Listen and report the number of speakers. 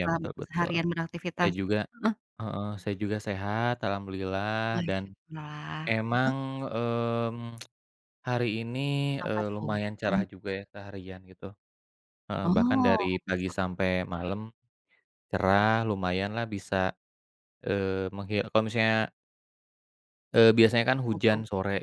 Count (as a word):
two